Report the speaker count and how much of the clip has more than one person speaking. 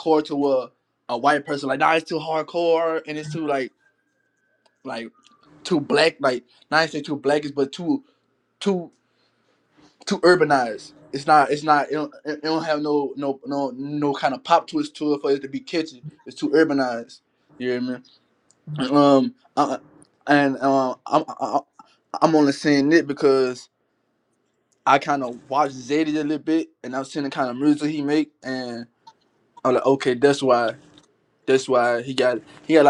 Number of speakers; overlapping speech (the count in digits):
1, no overlap